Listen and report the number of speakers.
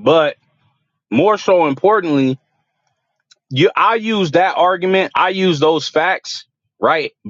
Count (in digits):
1